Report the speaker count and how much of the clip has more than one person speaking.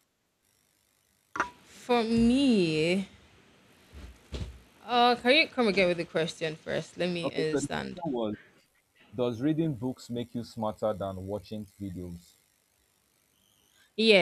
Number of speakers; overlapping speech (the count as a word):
two, about 5%